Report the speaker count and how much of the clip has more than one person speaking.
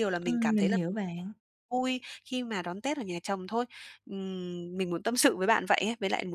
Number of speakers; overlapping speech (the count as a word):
two, about 9%